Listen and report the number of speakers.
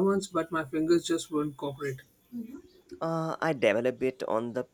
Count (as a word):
two